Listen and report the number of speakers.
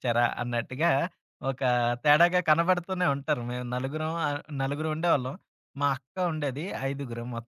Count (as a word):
one